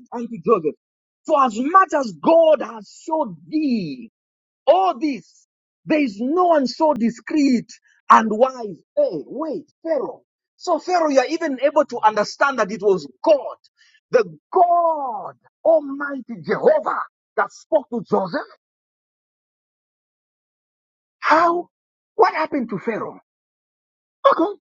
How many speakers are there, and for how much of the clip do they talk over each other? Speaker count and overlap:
one, no overlap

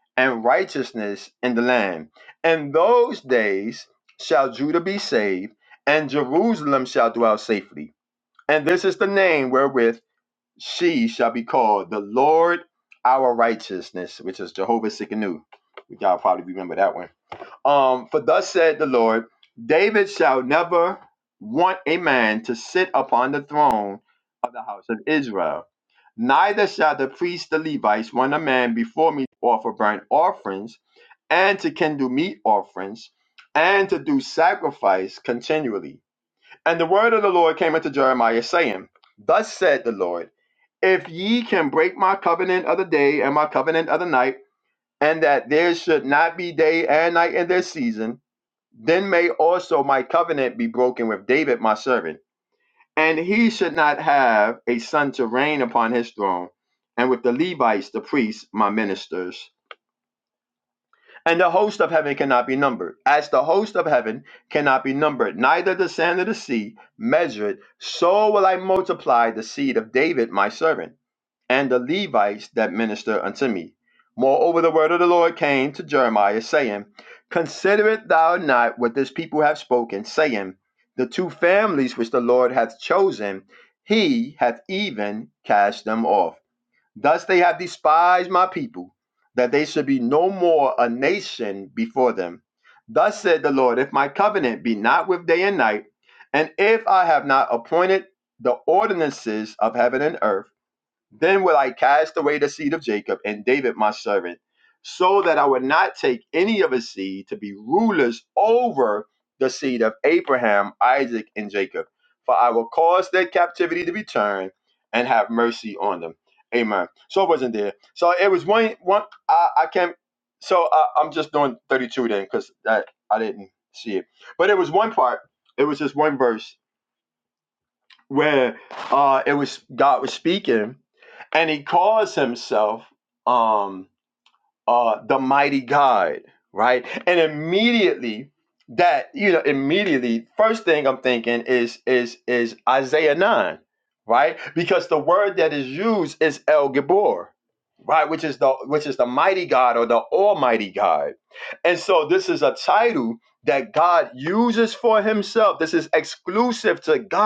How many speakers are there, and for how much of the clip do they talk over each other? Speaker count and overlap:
one, no overlap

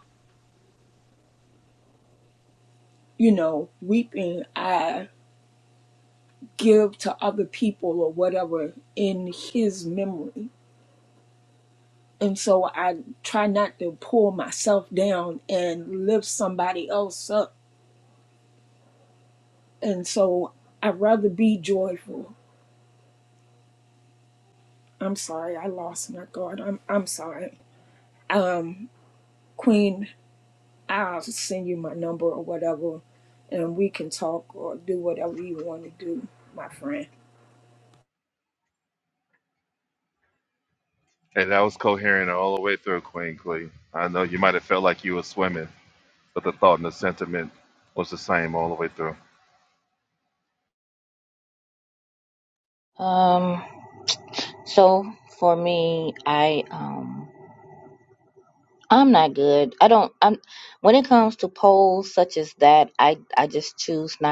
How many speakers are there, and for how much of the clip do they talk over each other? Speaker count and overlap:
three, no overlap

